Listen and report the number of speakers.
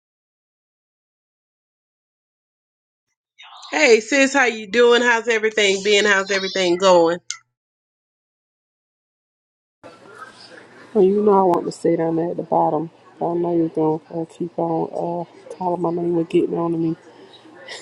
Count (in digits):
2